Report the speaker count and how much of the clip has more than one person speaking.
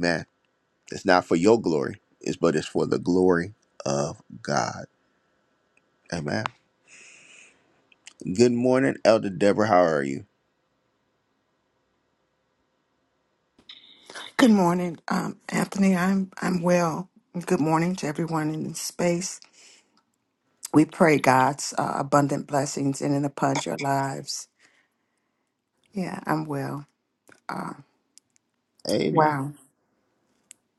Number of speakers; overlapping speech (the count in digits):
2, about 1%